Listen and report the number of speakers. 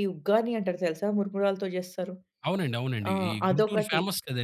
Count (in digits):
2